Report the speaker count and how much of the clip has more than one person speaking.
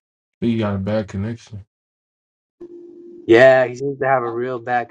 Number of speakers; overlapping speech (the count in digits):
2, no overlap